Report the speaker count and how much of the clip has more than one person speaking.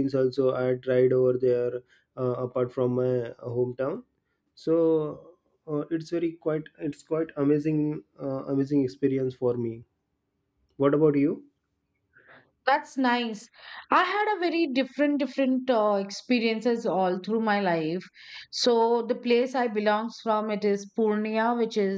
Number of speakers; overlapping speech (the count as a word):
two, no overlap